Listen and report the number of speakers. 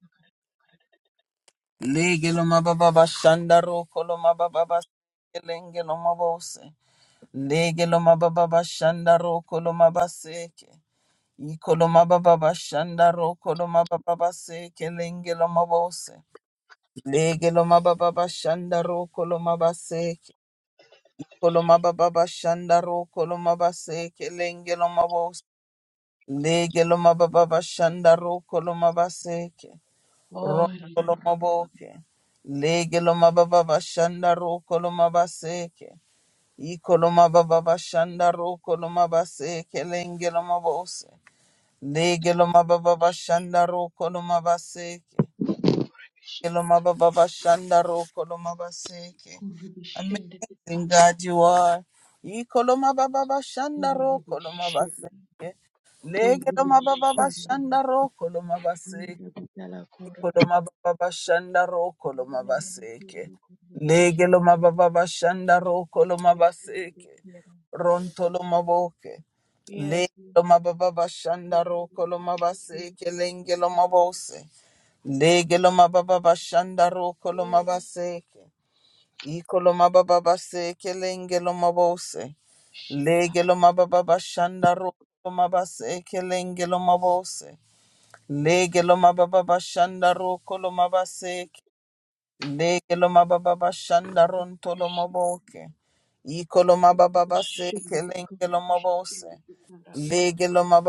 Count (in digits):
2